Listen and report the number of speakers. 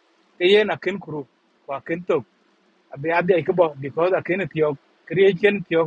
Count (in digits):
1